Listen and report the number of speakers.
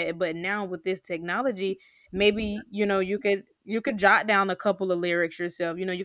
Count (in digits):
1